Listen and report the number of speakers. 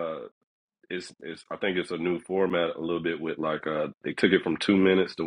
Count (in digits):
1